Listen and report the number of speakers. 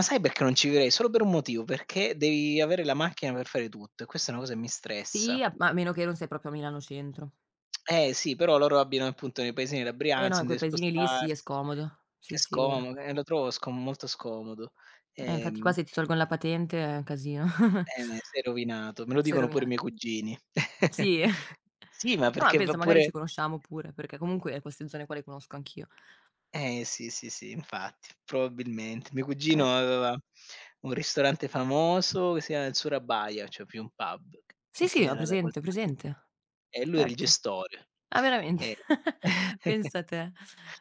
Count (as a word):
two